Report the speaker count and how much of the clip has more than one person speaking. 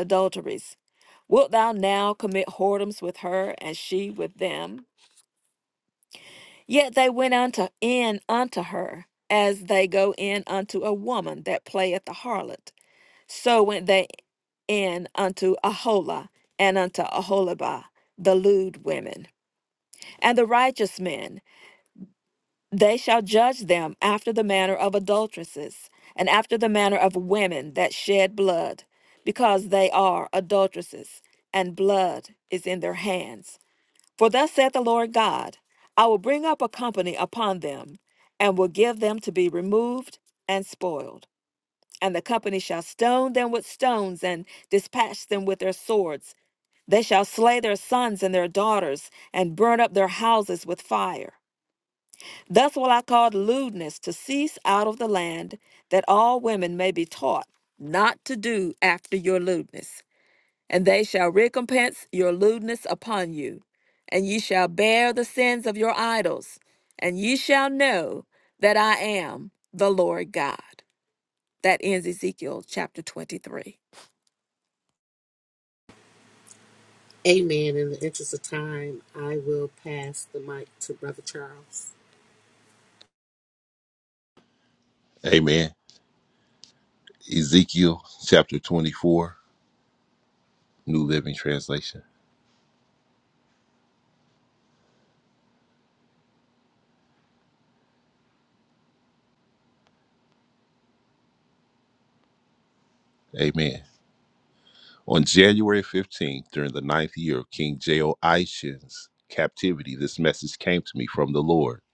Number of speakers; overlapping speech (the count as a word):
three, no overlap